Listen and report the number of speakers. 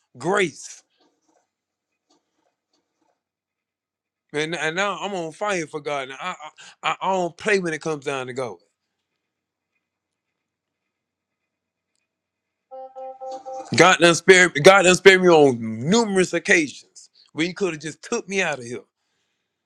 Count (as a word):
one